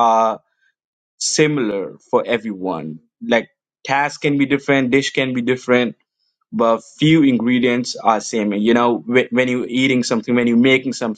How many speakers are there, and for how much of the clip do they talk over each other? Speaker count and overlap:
1, no overlap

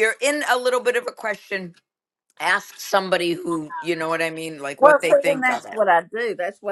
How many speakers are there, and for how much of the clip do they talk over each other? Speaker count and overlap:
2, about 15%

